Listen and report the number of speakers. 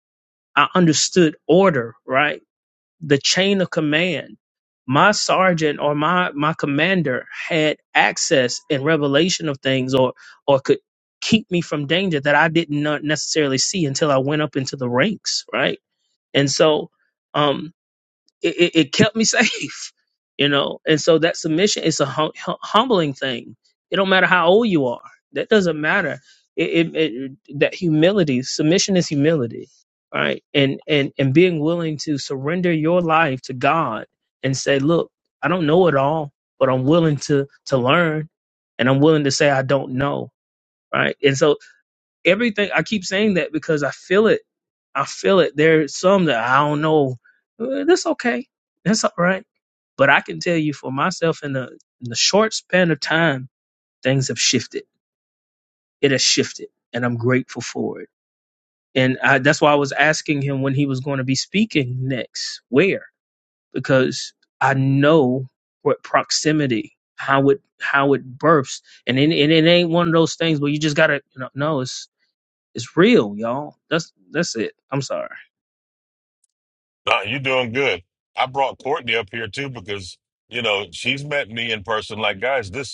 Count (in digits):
2